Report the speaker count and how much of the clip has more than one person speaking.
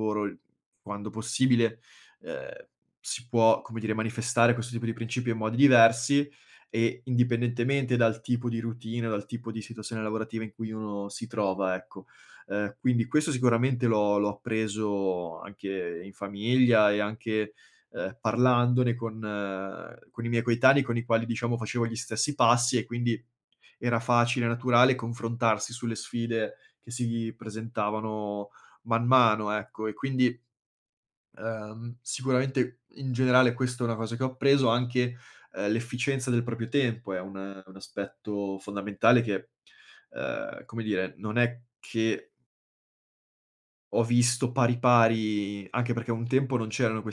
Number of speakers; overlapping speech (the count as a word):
one, no overlap